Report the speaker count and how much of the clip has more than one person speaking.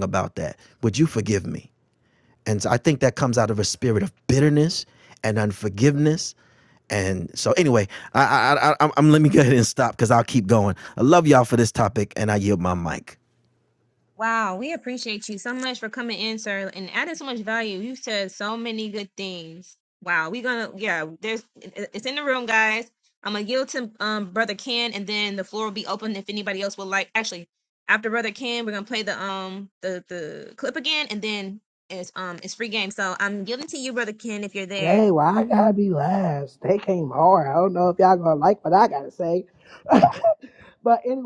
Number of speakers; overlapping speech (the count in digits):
3, about 1%